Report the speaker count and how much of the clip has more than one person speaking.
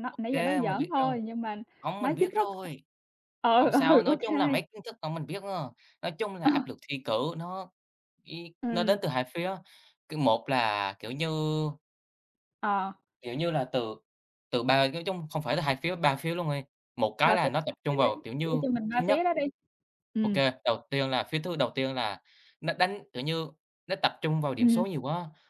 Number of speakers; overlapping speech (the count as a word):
two, about 19%